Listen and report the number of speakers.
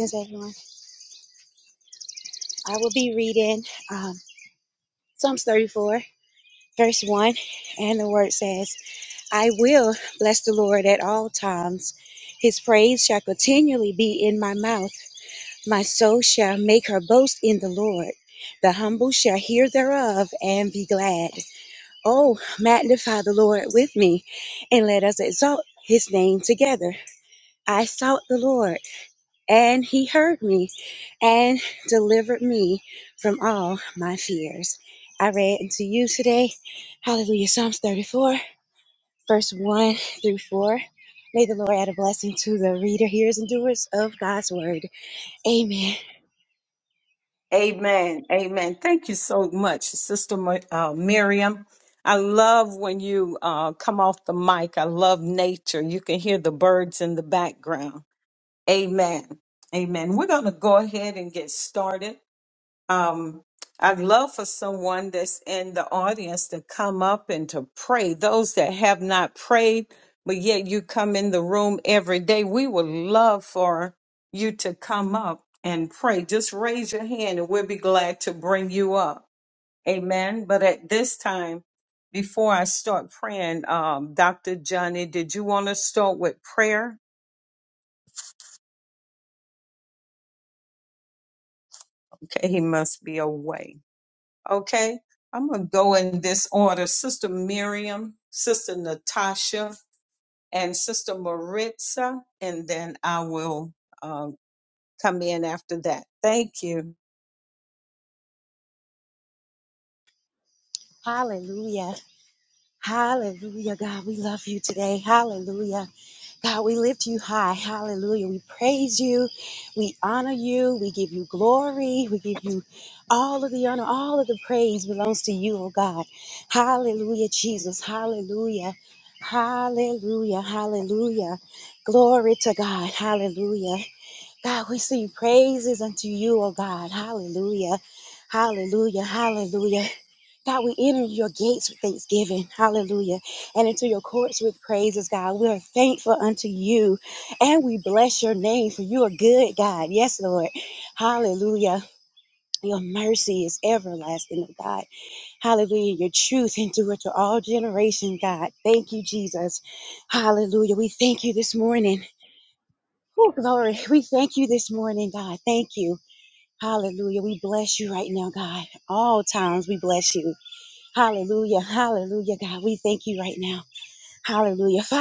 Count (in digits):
2